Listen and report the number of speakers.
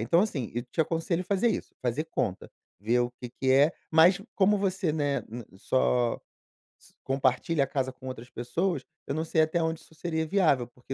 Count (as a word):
one